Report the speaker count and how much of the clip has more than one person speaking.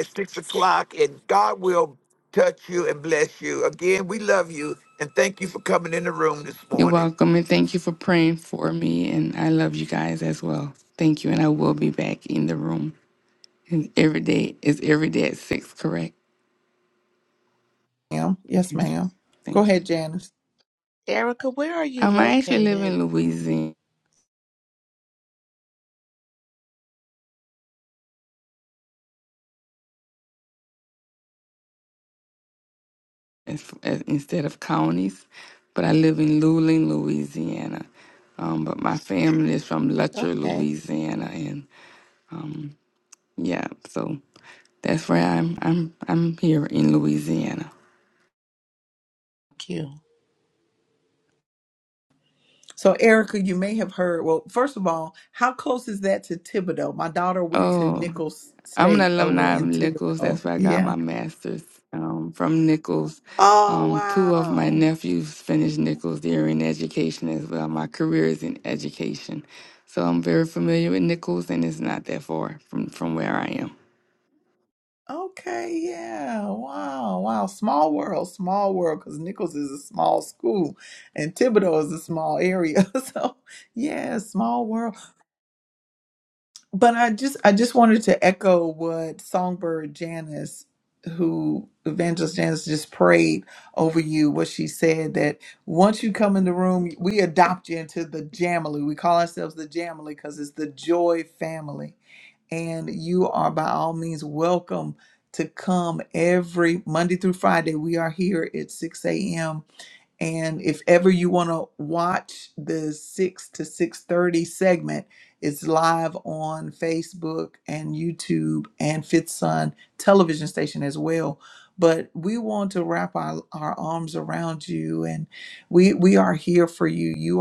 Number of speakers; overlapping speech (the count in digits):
4, about 5%